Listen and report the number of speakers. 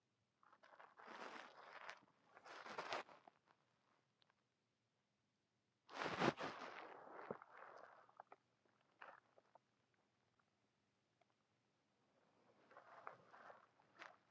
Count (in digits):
0